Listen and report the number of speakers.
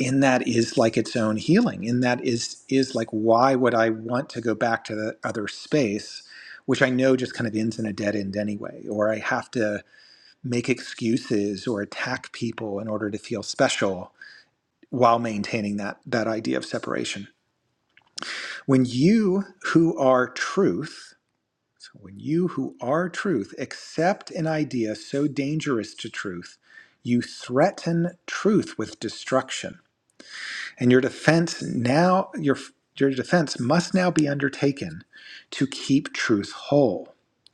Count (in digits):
1